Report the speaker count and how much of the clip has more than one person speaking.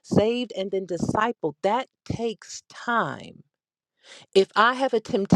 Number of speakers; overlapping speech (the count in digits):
1, no overlap